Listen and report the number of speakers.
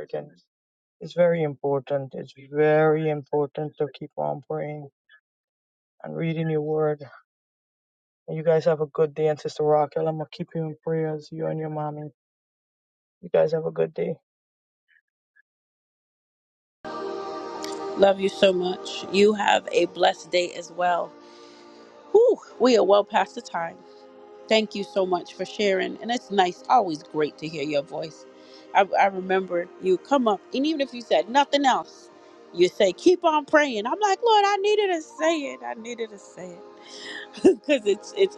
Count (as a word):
two